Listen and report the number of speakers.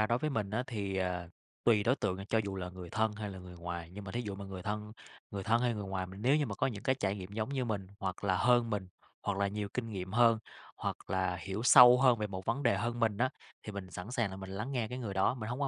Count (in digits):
1